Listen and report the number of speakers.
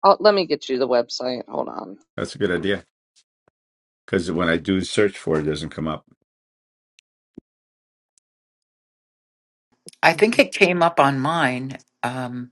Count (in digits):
3